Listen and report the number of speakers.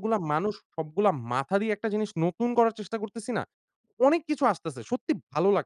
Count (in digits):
1